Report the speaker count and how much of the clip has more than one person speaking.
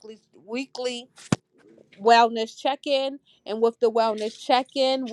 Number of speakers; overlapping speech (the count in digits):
1, no overlap